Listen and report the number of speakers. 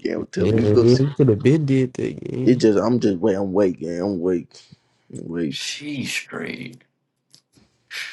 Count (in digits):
3